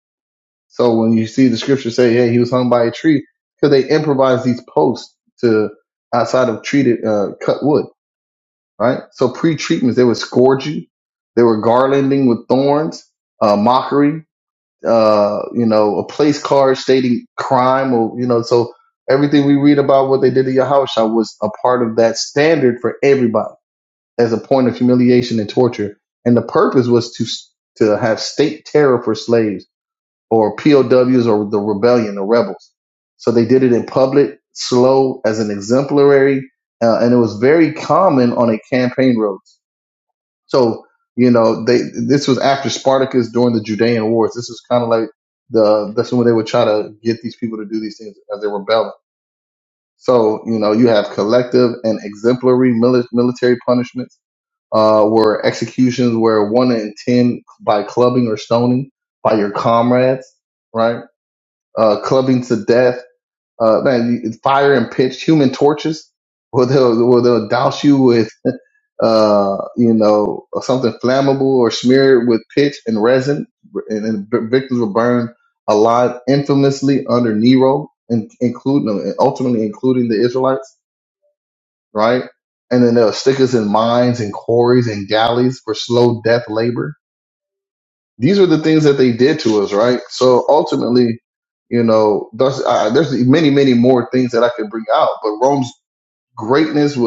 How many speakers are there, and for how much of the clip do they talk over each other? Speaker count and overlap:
one, no overlap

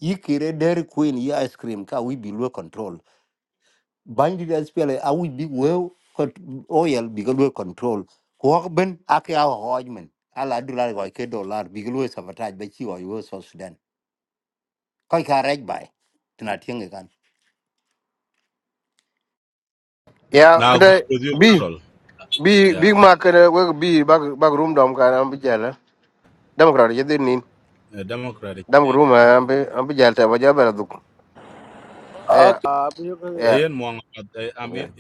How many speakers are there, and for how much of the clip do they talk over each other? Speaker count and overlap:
four, about 5%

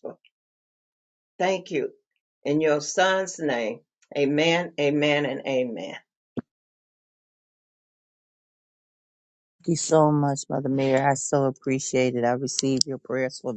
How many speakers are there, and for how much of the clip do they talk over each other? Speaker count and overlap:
two, no overlap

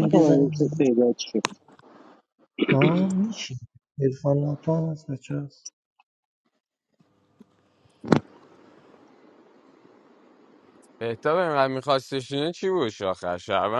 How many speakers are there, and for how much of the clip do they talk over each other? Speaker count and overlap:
three, about 6%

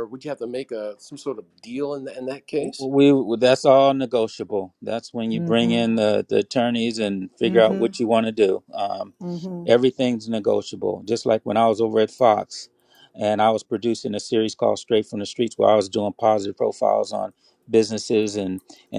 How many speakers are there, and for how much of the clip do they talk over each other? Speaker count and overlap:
three, about 5%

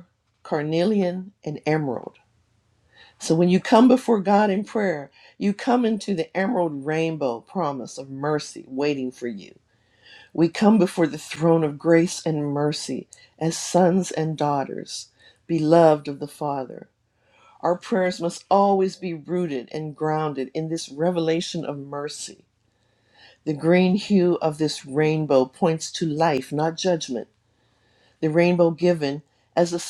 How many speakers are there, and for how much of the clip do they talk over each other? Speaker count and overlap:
one, no overlap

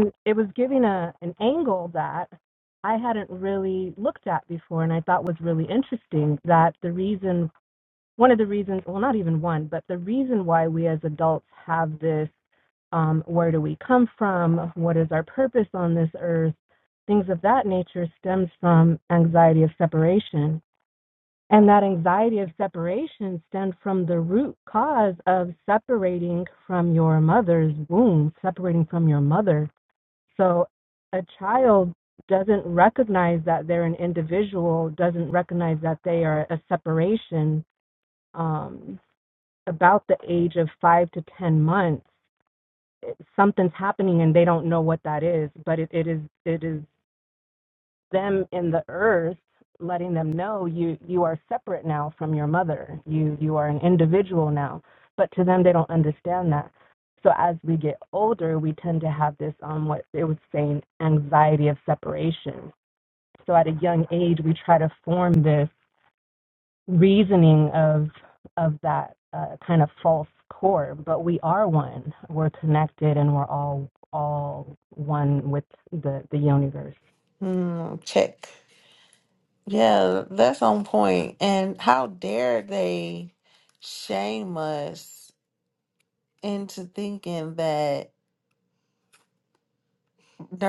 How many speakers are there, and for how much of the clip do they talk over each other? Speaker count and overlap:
two, no overlap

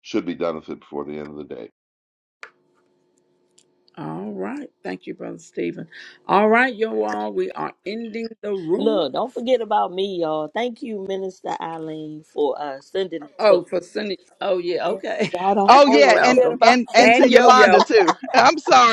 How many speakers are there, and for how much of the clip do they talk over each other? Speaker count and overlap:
four, about 14%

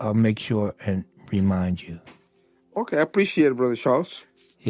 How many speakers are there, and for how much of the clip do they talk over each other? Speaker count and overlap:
two, no overlap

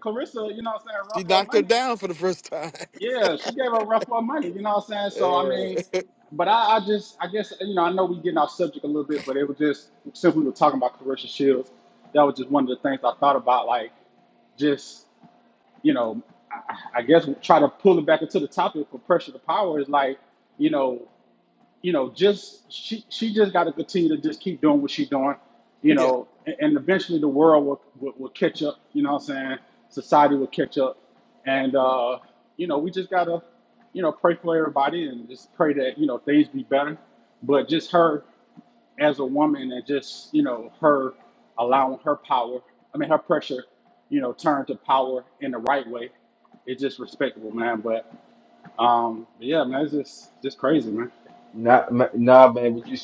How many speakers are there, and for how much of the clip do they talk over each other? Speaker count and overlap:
three, about 2%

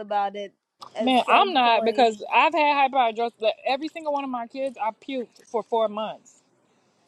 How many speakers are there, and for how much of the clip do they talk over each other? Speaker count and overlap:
two, about 15%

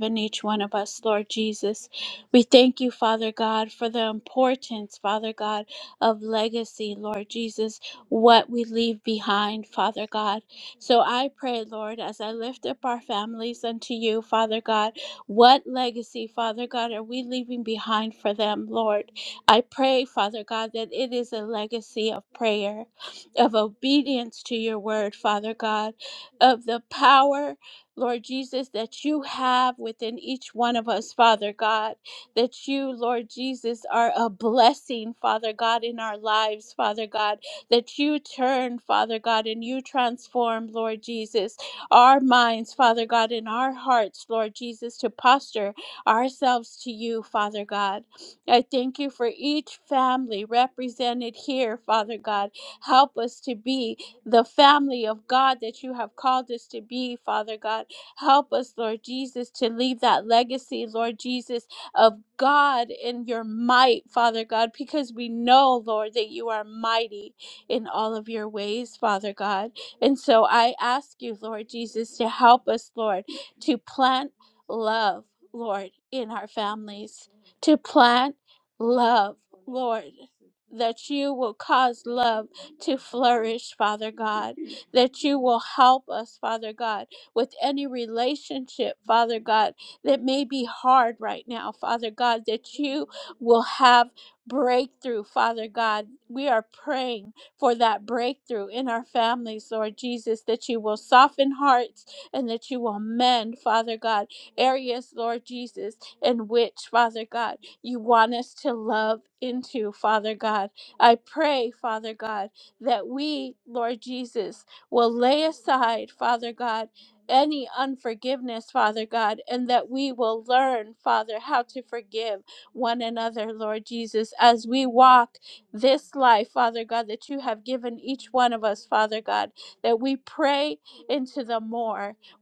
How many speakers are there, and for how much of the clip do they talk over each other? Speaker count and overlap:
one, no overlap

